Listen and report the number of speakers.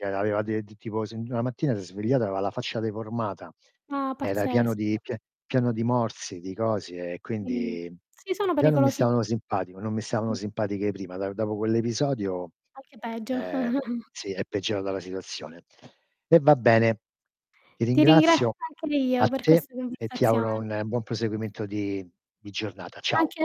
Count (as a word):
two